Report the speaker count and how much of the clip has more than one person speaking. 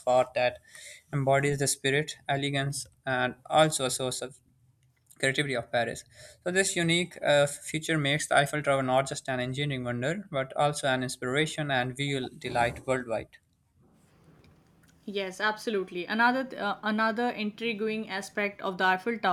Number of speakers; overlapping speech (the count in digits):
2, no overlap